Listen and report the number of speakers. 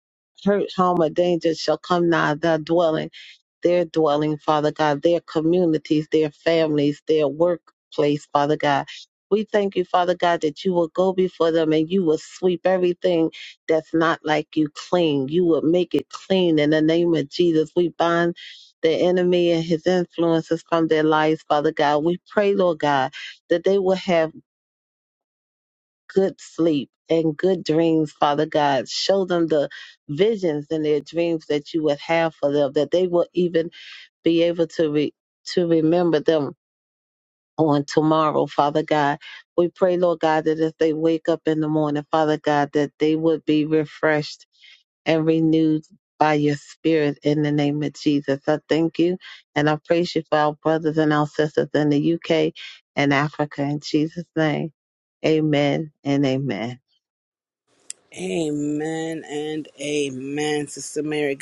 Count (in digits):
2